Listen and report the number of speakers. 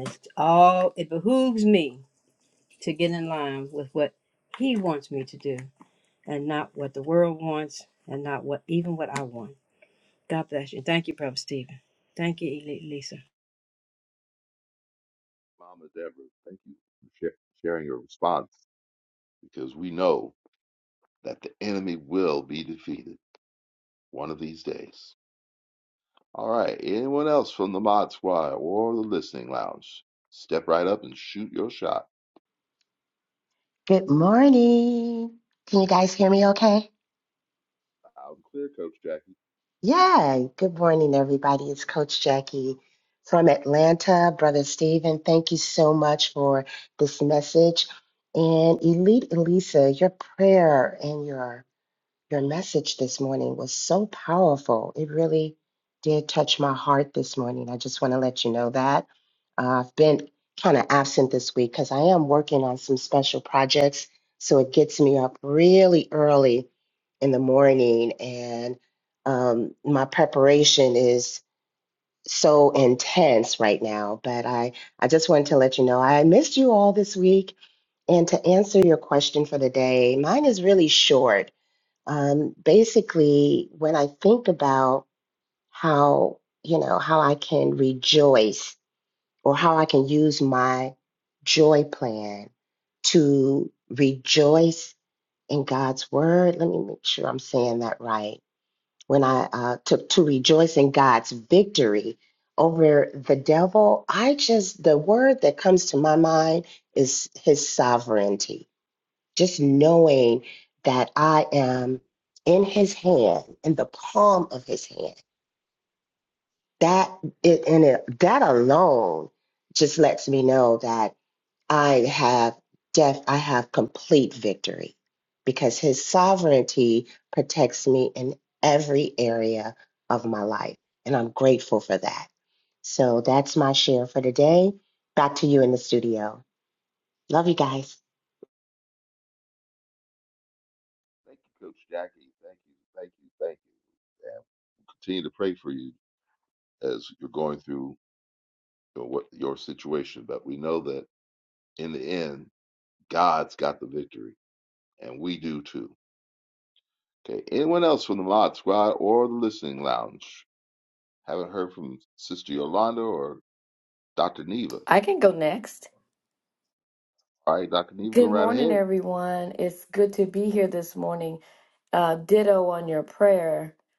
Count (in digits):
4